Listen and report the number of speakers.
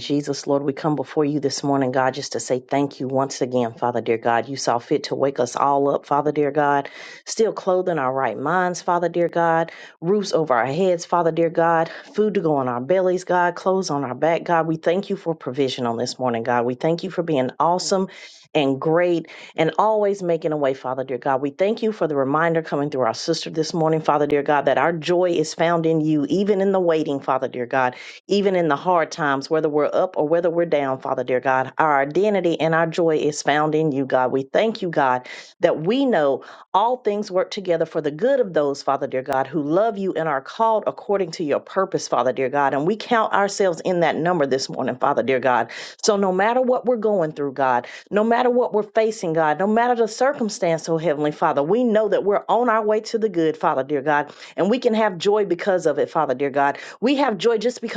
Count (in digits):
1